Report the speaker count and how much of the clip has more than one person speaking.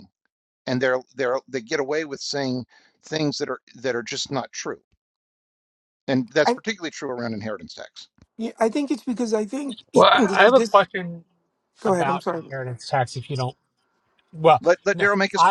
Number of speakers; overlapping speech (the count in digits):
3, about 13%